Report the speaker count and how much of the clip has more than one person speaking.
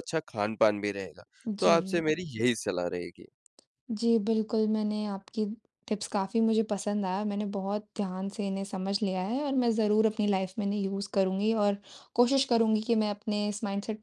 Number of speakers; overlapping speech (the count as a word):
two, about 3%